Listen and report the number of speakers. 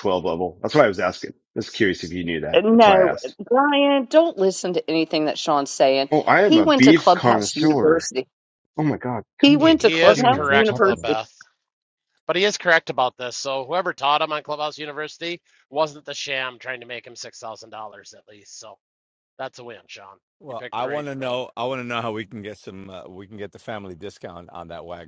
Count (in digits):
4